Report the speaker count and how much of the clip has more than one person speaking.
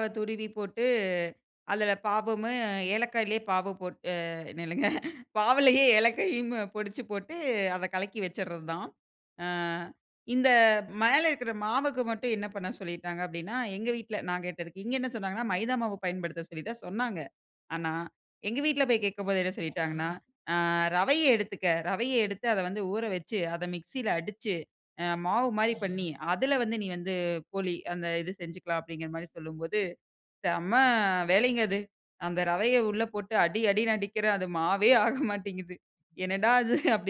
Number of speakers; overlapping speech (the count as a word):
one, no overlap